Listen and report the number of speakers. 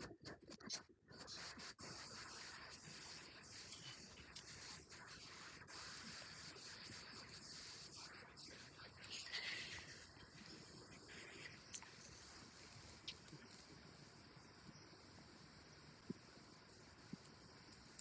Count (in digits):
0